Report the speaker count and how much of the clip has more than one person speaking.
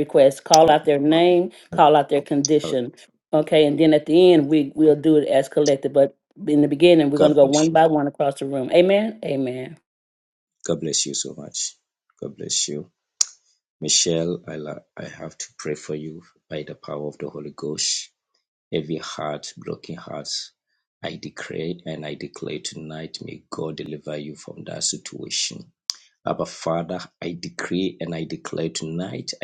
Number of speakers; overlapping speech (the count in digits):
2, about 1%